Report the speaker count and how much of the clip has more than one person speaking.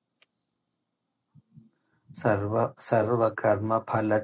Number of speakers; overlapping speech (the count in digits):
1, no overlap